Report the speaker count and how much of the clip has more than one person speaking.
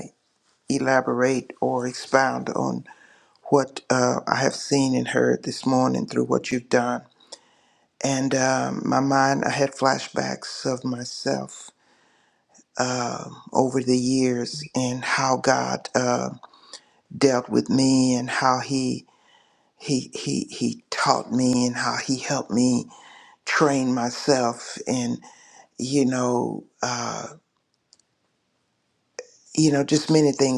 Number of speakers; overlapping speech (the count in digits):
1, no overlap